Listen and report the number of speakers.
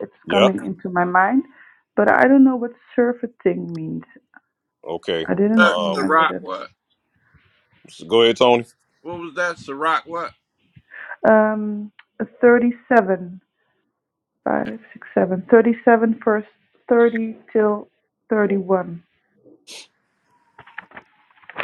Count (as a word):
three